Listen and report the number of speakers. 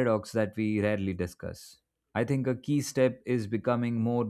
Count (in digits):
1